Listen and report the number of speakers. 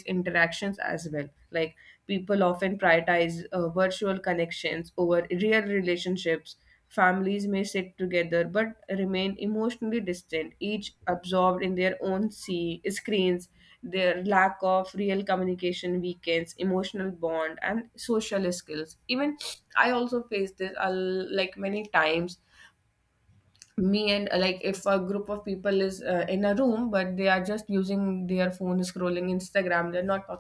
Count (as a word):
one